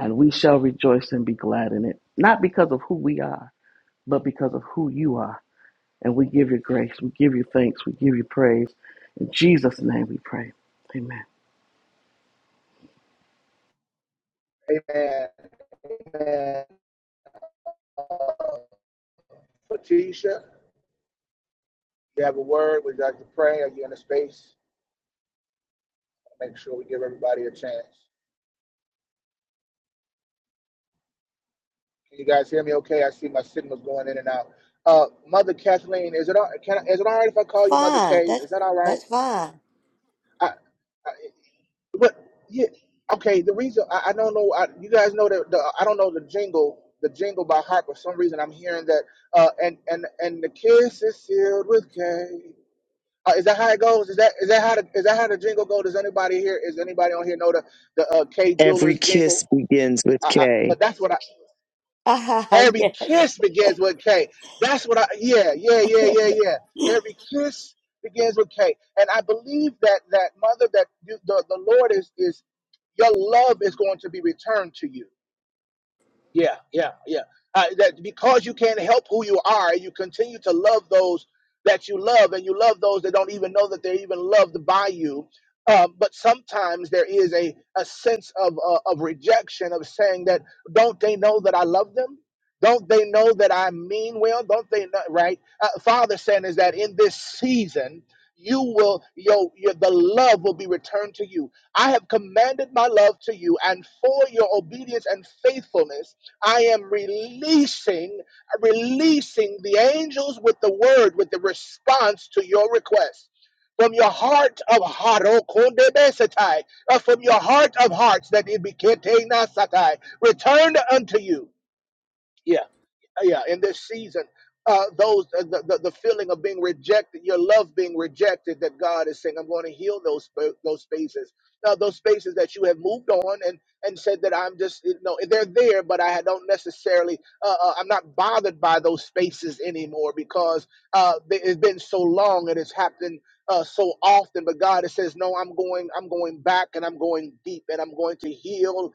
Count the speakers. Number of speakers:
four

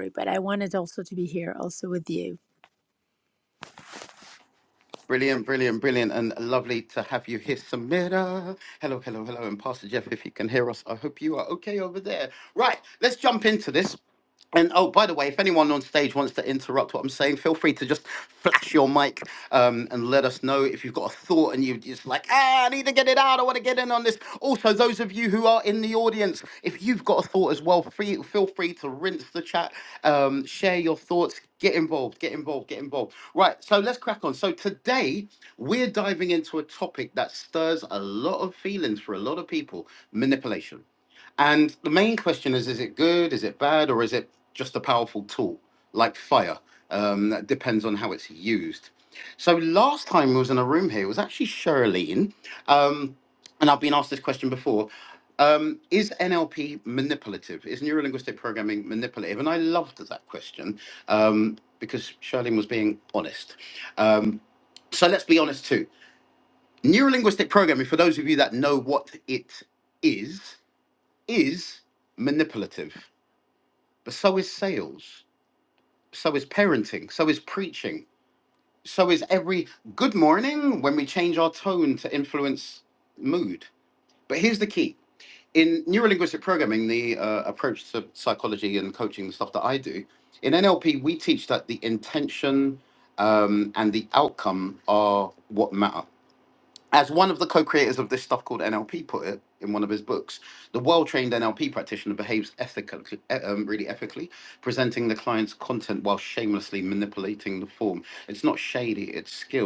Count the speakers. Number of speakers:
two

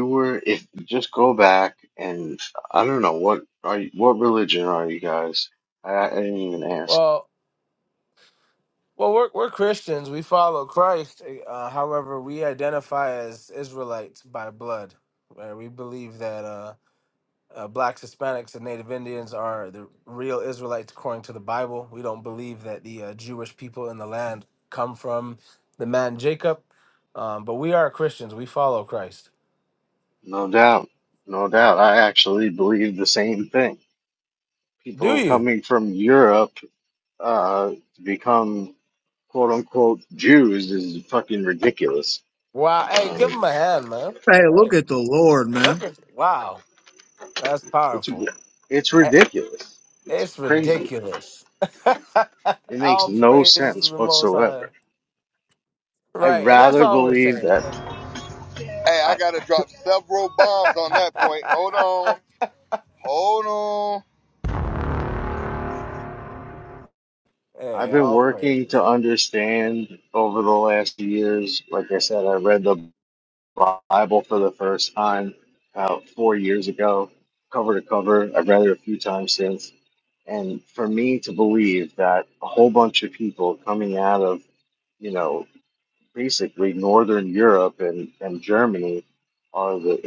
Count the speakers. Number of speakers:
four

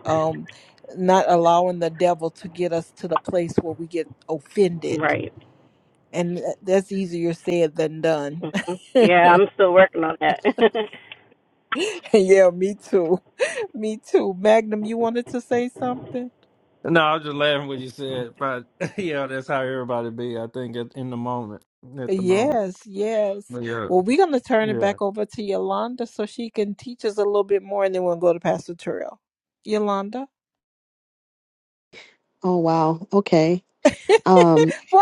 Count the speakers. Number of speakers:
four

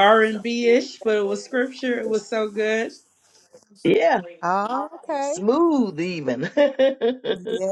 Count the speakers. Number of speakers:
three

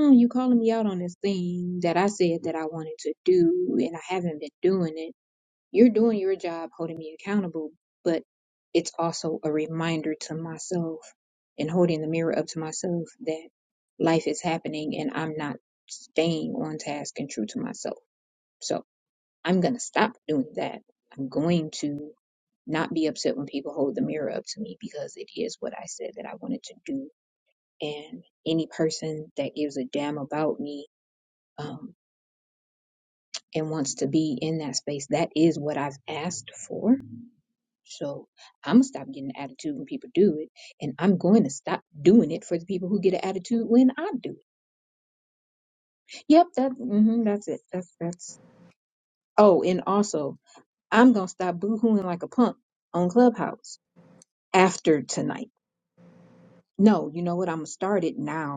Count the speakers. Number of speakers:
one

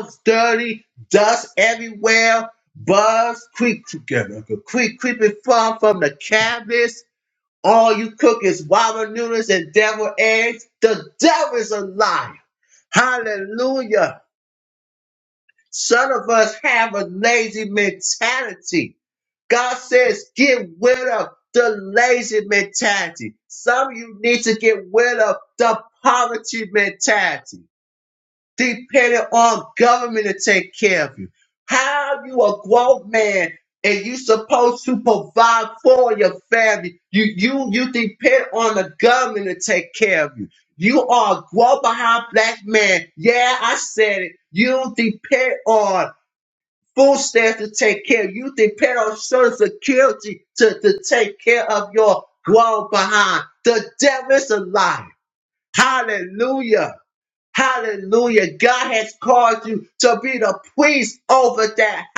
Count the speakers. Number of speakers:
one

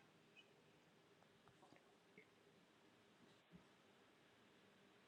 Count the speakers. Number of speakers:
zero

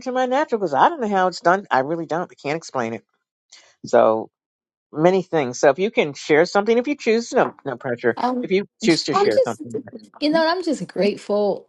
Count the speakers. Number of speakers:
two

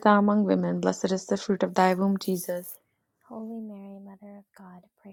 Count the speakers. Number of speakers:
two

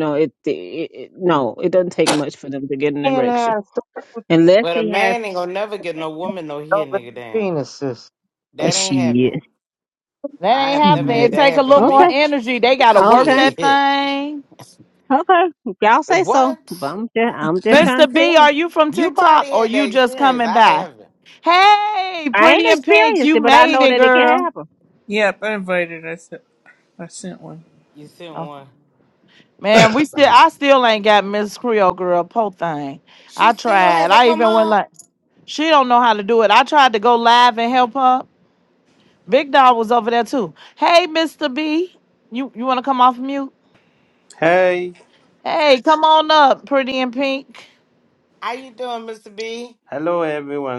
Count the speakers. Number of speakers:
six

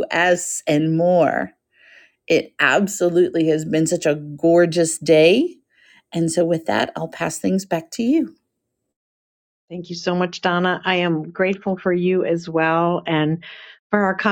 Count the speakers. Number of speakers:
two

